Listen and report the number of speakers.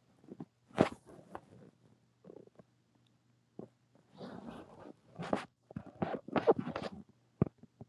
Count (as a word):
zero